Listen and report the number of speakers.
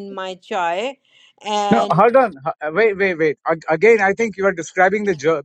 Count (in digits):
2